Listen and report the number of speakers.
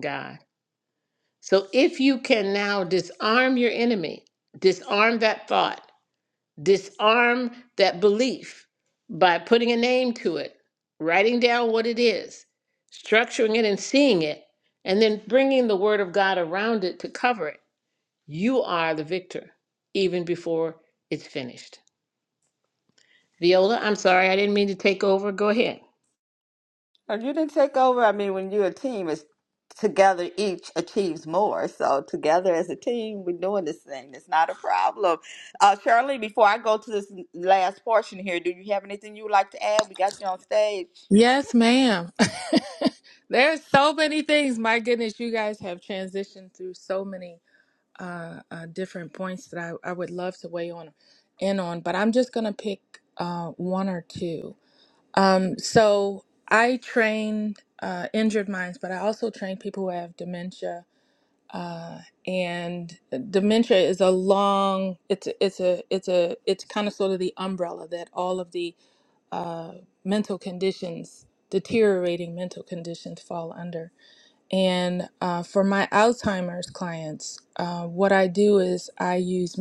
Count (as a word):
three